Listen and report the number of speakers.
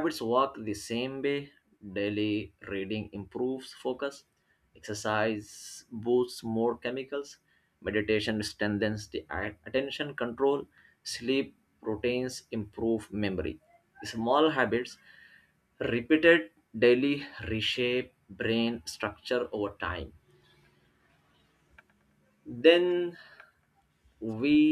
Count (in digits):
1